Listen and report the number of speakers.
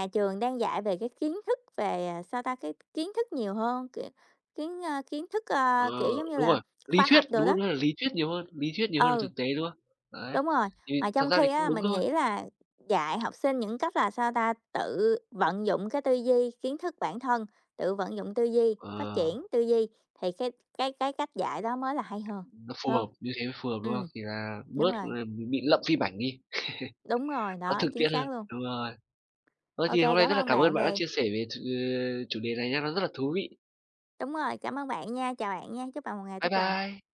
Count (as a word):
two